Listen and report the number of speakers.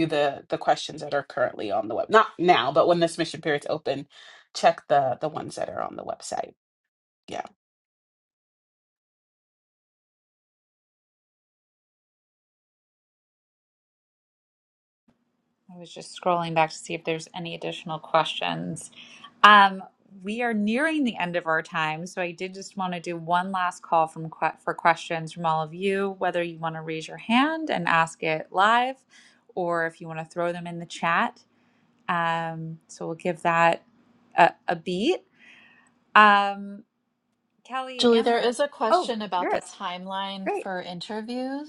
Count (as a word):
three